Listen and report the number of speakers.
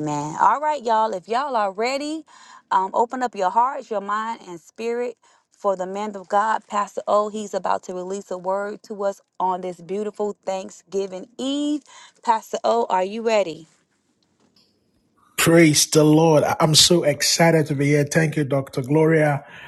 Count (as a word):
two